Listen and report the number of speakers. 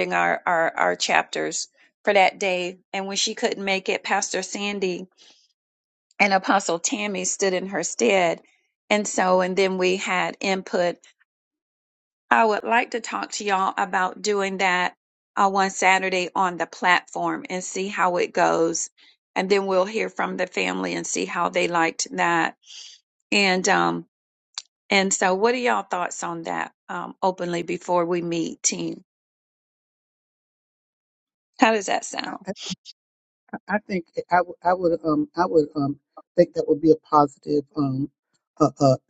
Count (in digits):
2